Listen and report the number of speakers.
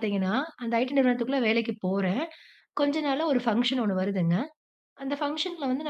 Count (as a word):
one